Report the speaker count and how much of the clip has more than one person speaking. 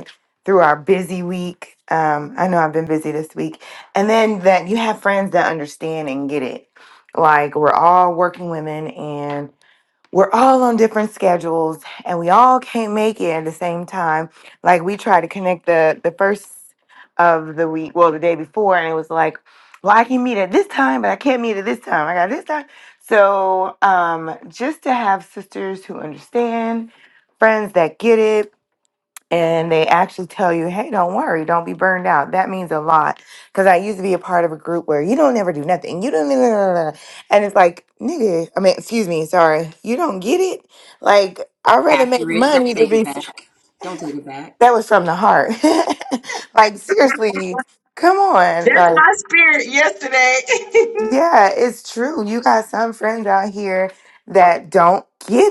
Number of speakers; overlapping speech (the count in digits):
3, about 3%